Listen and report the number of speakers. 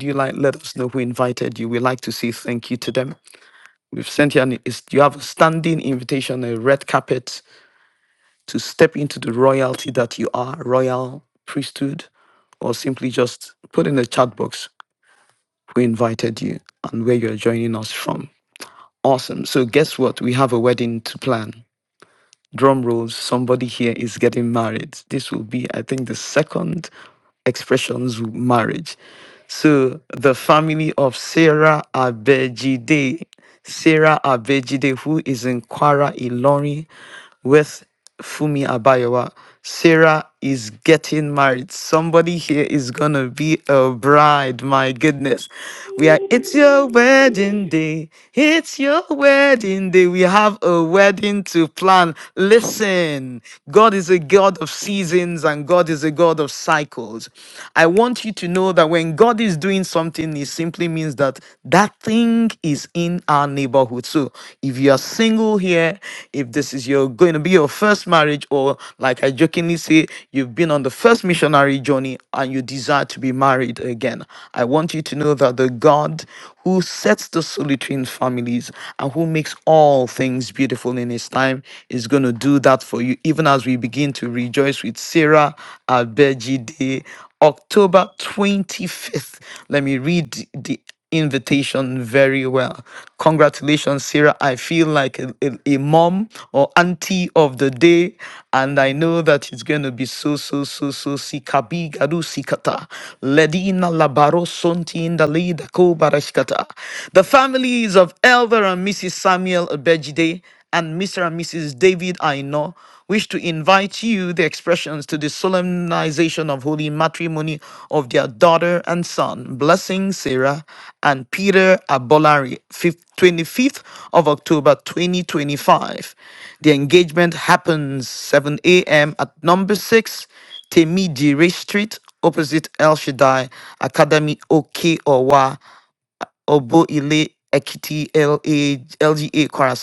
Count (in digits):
1